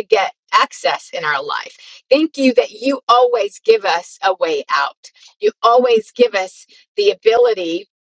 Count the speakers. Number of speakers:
1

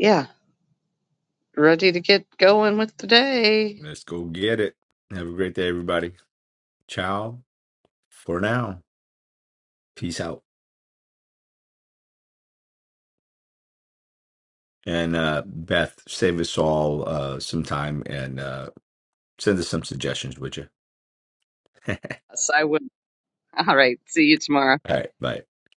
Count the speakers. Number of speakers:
2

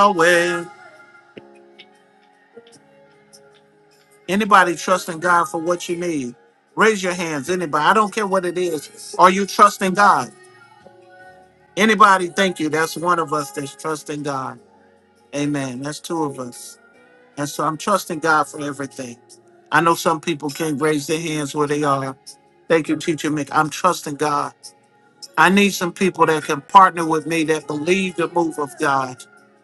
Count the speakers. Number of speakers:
1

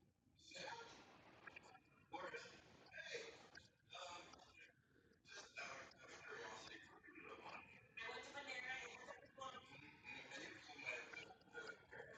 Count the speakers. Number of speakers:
0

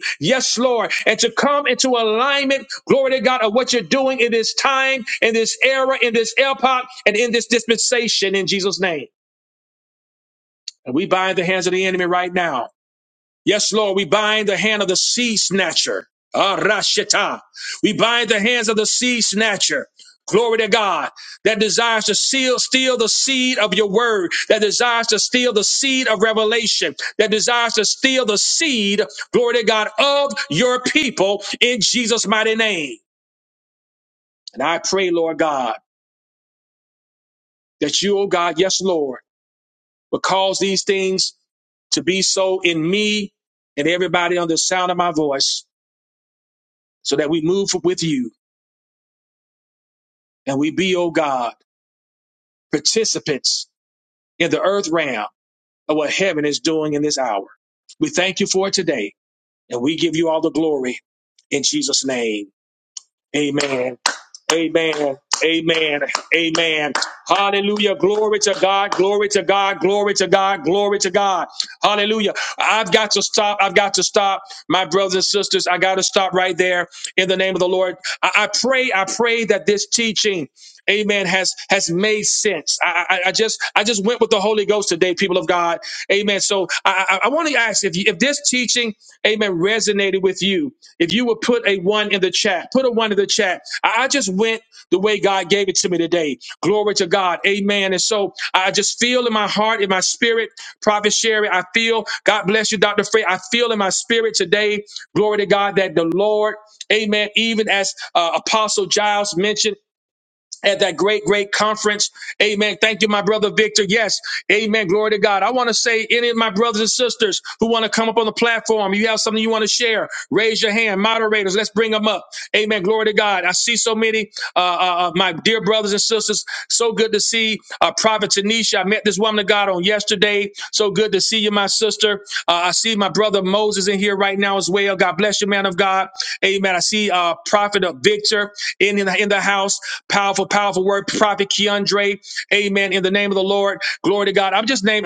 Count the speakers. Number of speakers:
1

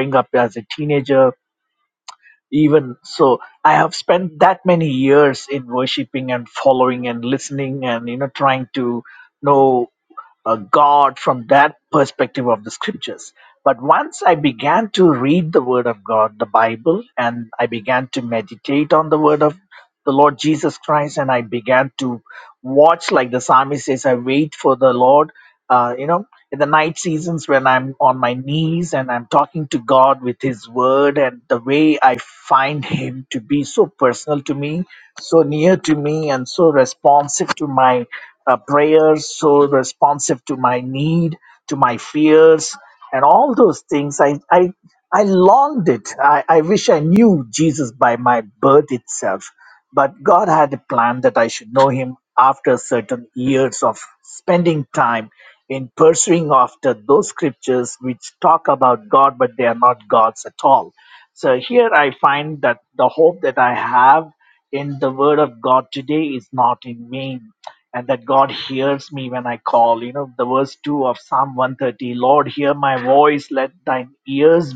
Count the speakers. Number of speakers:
1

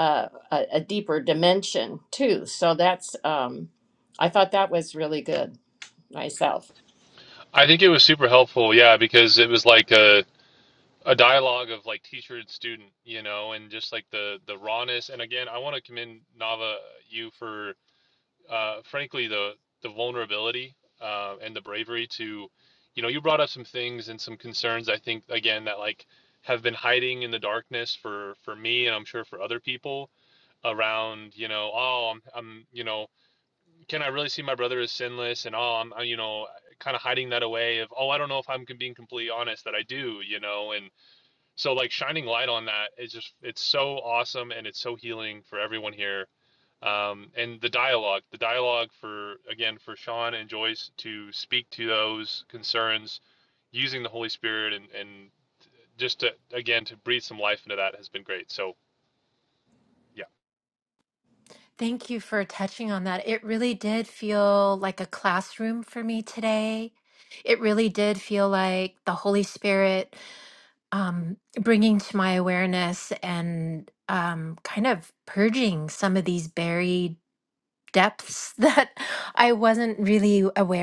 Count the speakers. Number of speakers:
3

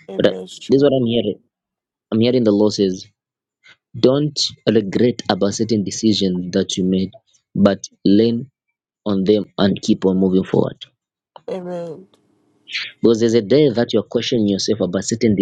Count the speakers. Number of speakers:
2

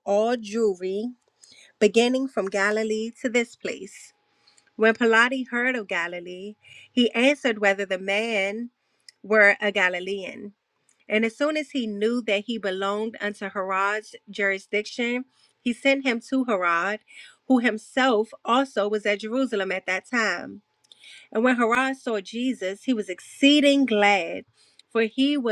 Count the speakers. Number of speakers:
1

